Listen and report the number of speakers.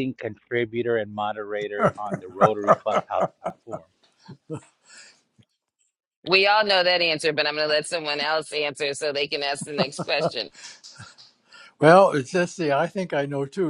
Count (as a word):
three